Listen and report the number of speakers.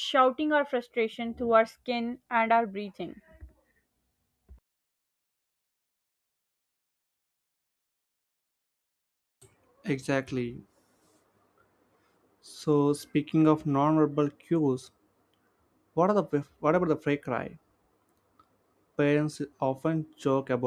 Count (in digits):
2